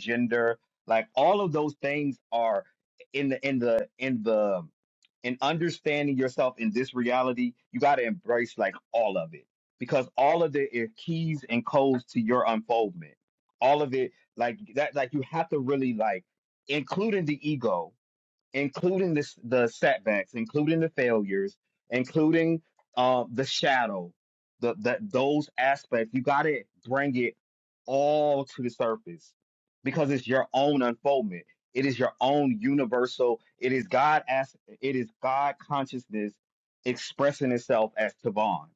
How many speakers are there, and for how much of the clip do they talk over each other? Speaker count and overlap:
1, no overlap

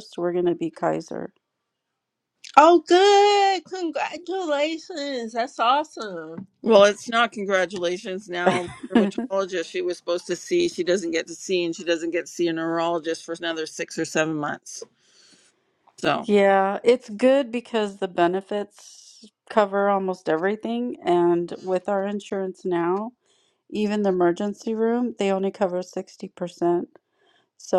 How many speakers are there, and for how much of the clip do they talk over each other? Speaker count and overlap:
3, no overlap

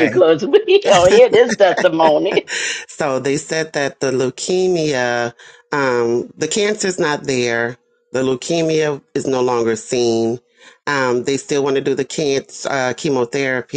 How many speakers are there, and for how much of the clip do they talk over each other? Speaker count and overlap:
2, about 1%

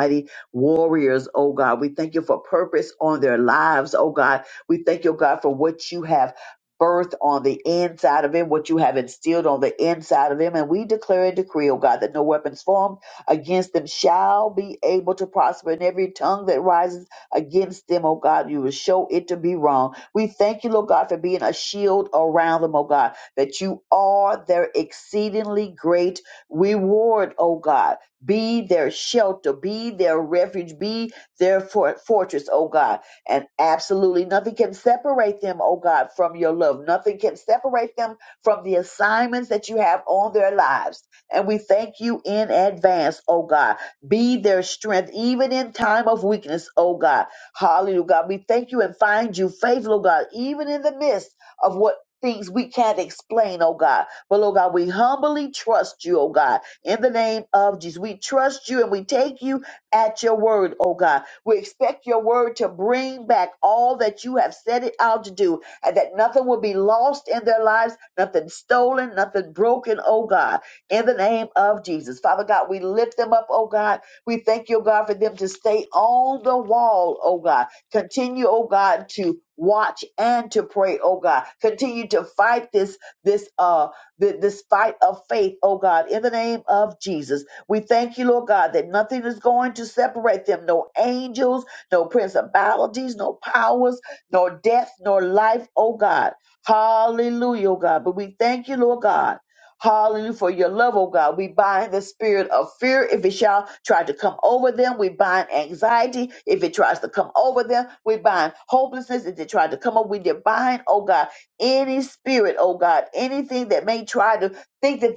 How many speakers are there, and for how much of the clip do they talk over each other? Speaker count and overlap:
1, no overlap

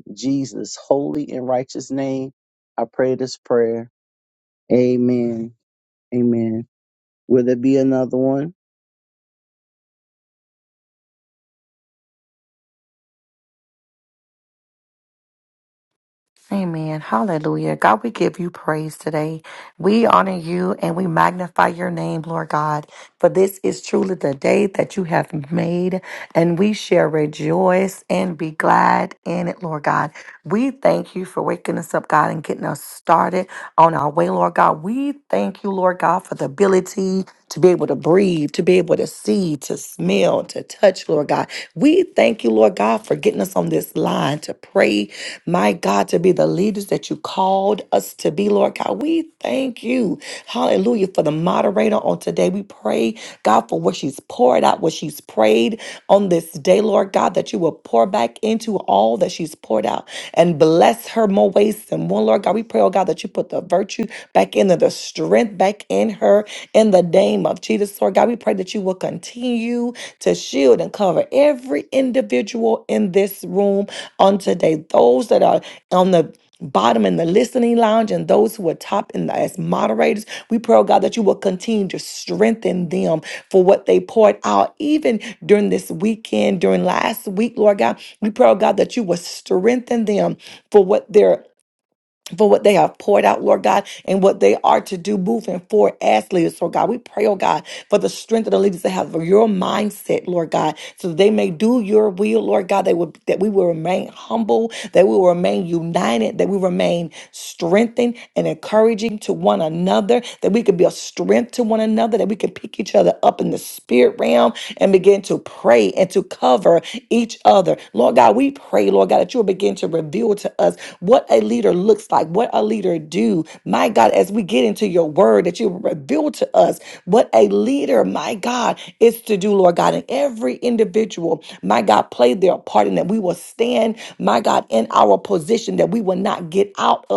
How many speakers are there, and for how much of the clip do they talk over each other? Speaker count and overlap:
2, no overlap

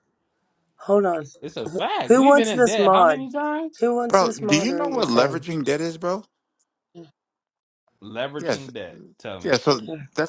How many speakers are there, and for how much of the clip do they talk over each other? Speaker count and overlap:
3, about 30%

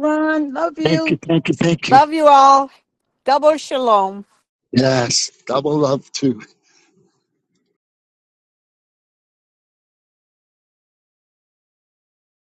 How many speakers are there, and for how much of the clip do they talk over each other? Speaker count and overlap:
3, about 3%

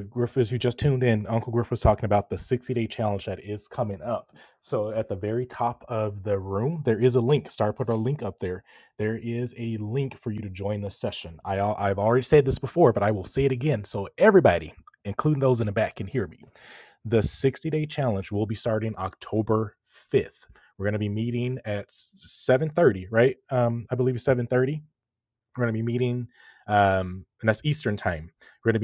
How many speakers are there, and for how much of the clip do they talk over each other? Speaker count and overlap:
1, no overlap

